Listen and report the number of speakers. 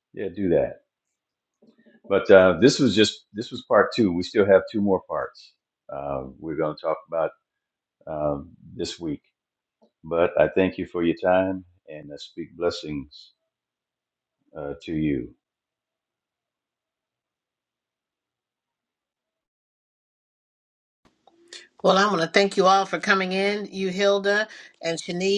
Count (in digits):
2